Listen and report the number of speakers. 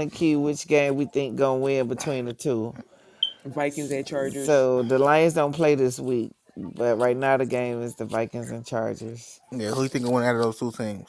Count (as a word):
three